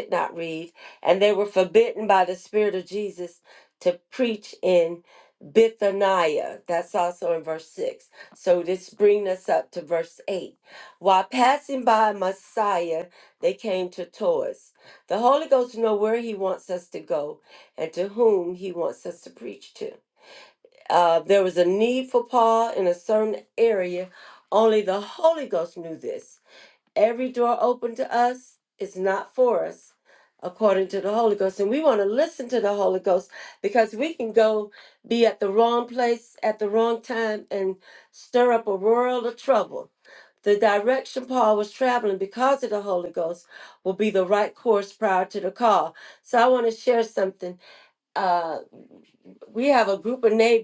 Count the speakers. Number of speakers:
one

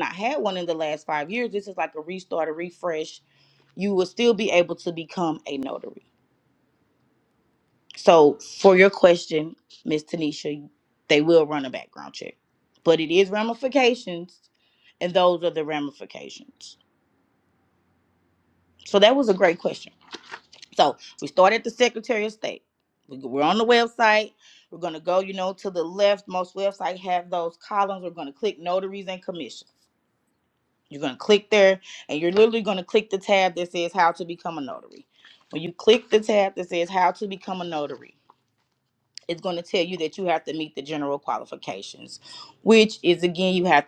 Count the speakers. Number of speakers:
one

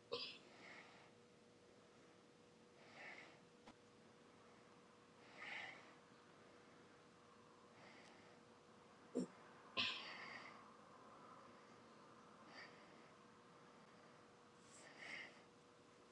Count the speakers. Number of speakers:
zero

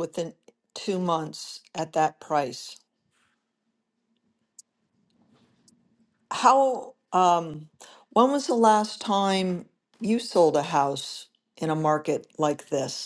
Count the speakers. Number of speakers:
one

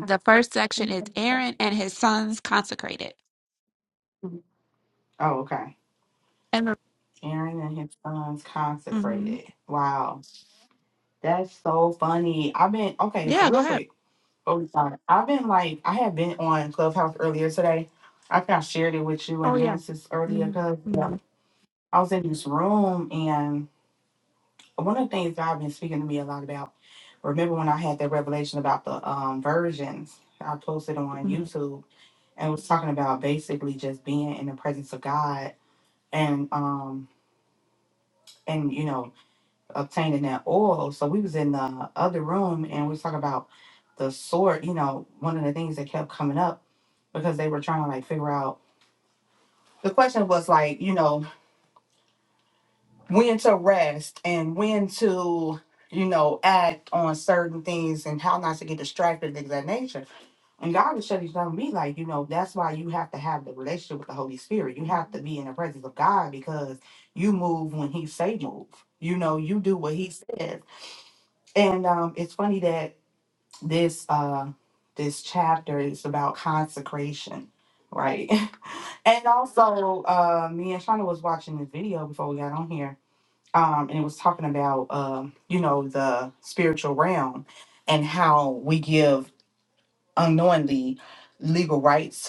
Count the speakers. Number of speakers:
two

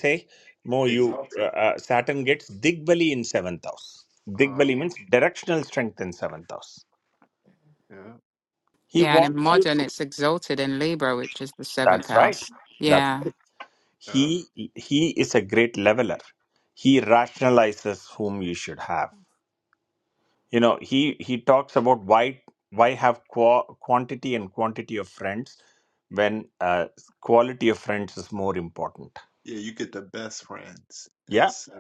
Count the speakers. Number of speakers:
three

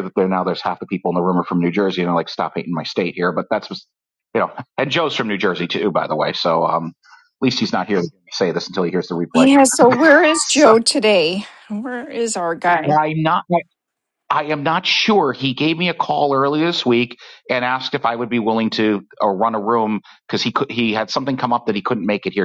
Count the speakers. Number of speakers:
two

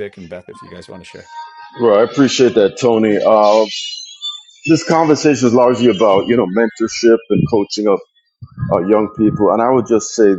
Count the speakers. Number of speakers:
two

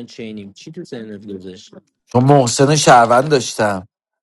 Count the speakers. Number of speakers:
two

